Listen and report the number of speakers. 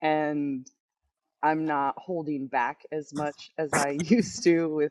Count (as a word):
one